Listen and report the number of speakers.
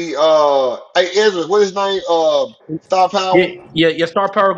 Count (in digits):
2